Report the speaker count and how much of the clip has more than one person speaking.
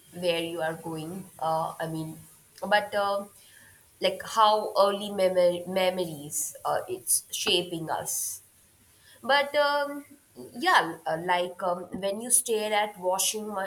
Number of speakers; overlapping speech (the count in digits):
1, no overlap